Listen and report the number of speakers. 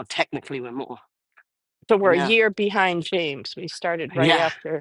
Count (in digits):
2